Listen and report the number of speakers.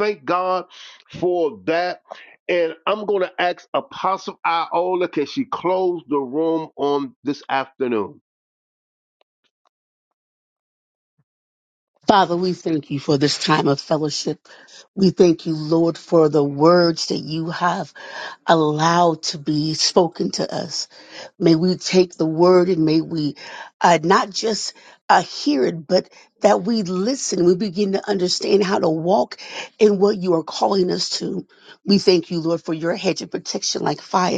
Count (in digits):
2